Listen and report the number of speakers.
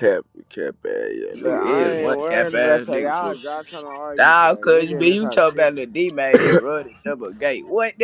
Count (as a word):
three